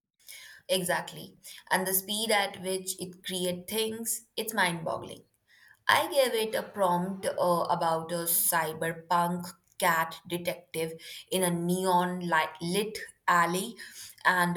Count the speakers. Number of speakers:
1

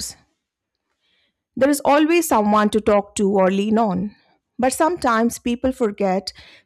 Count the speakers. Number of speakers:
1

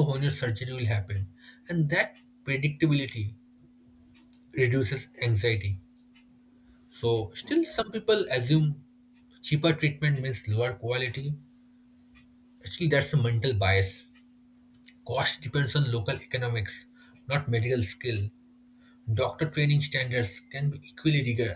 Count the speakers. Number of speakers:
1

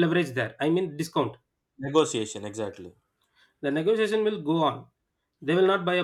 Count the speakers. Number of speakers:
2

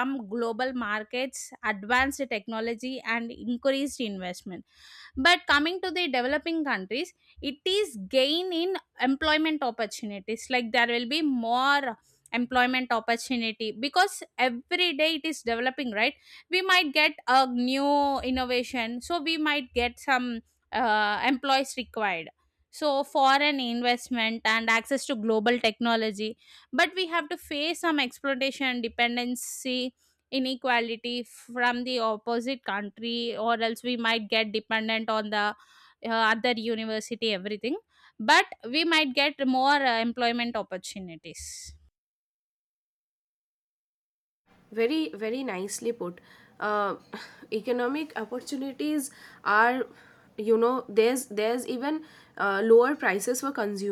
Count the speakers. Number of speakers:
2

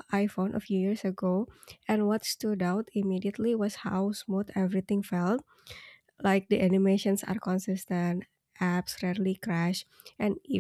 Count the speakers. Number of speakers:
1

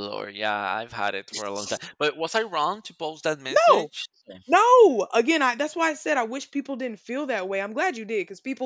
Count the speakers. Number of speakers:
2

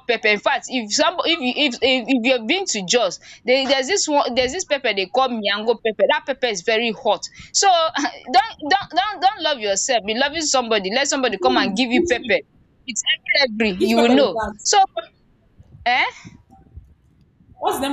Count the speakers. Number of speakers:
2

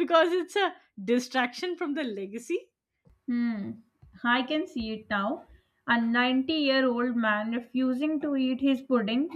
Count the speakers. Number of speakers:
2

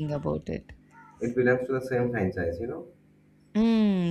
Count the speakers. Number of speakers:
2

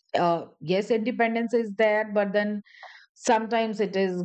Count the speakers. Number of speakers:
1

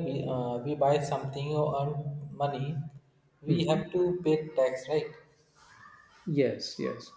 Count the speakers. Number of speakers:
2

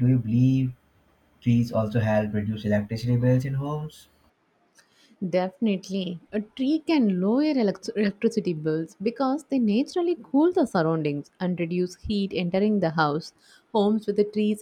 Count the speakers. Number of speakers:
2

